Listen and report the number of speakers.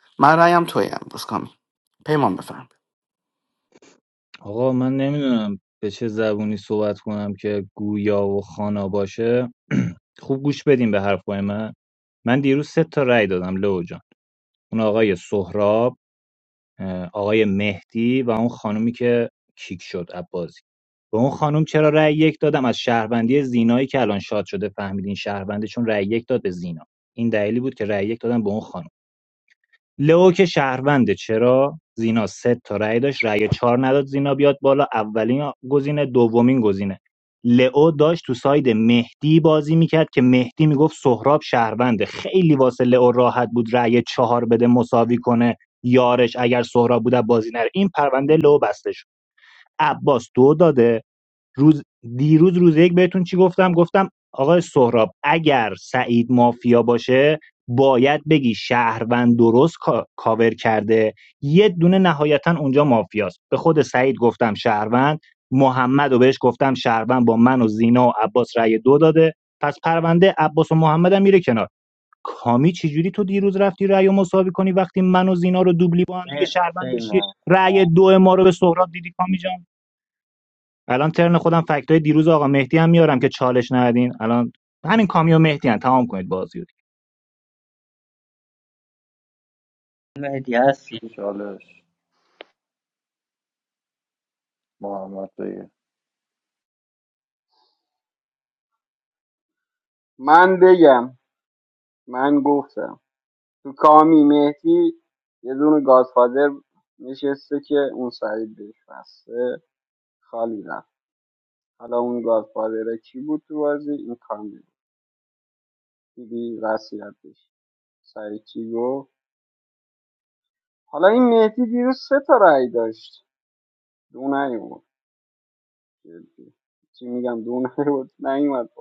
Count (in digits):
5